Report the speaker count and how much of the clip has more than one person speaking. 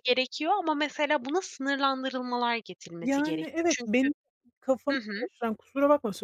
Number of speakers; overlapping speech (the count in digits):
2, about 24%